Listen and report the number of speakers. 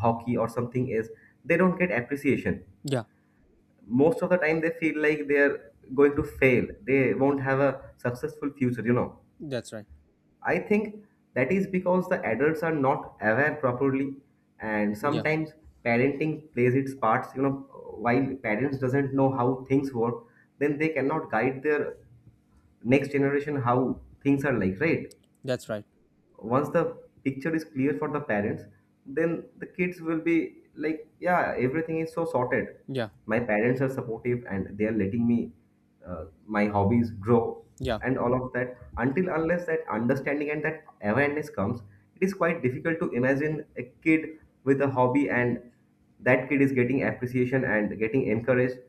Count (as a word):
two